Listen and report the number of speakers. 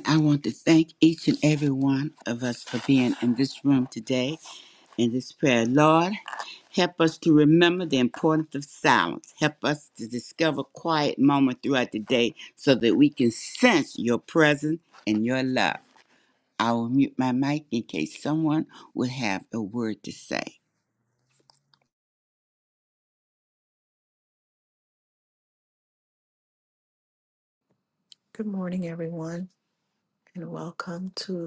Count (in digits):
2